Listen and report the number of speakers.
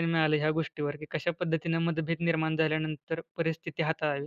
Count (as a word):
one